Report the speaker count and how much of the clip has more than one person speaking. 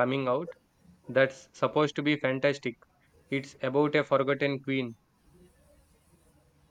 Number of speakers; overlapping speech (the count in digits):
1, no overlap